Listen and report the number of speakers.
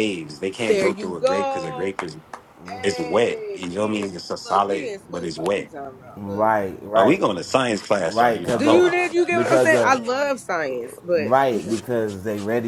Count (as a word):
three